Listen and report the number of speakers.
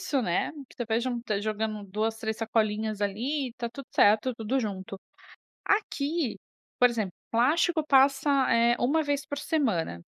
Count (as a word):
one